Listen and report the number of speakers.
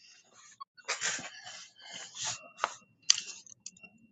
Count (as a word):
zero